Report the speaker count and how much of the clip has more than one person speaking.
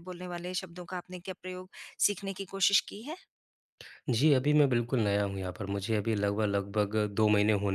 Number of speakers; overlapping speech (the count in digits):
2, no overlap